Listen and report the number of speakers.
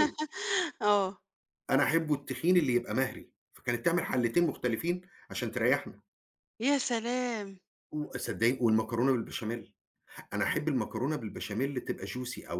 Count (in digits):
2